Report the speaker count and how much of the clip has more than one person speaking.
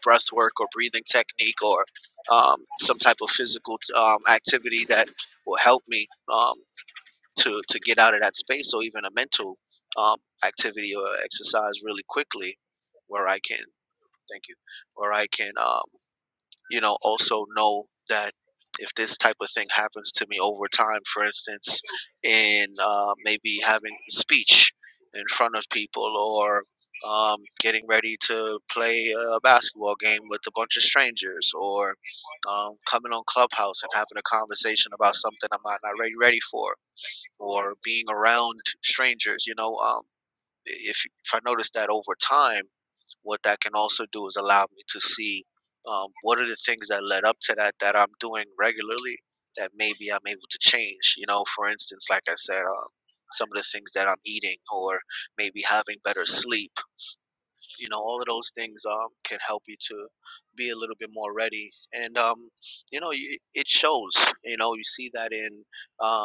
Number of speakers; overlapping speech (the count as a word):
one, no overlap